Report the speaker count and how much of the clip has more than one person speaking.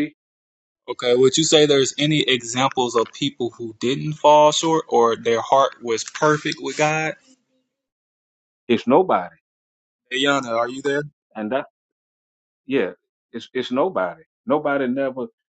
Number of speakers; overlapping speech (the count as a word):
two, no overlap